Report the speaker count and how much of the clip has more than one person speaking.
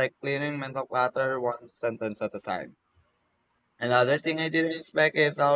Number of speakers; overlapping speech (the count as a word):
one, no overlap